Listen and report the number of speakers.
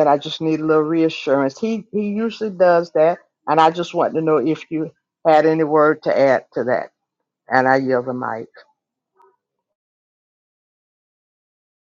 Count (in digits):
1